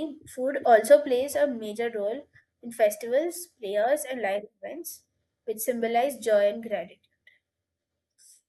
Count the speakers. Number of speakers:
one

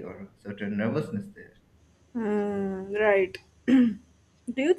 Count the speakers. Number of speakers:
two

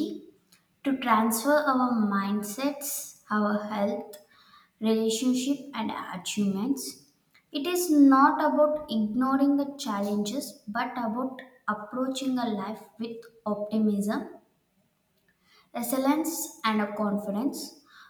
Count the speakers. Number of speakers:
one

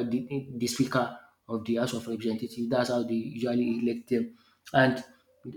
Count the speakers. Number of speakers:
one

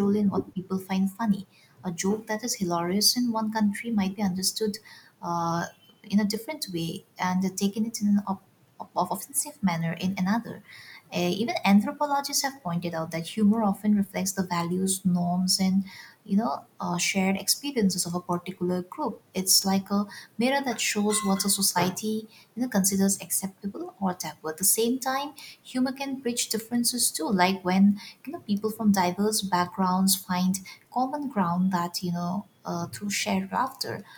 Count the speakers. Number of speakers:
one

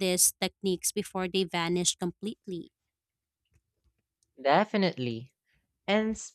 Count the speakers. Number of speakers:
two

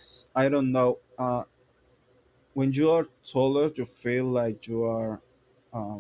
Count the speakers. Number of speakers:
one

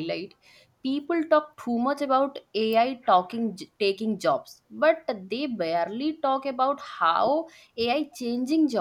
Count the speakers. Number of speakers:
one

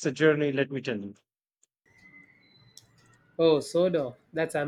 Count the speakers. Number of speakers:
two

